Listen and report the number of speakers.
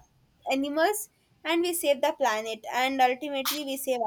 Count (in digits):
1